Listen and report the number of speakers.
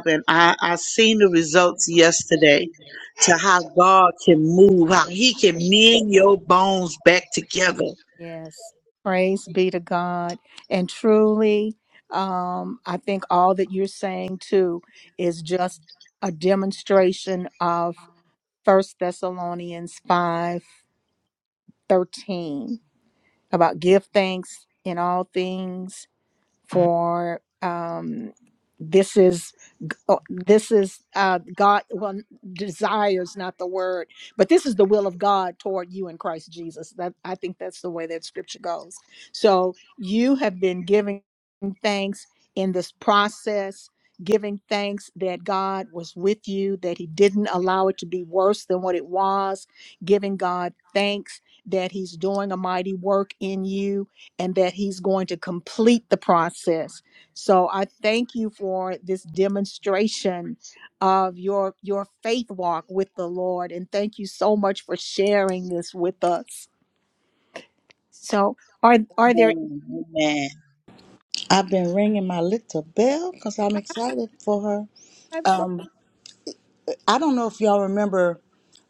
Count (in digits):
3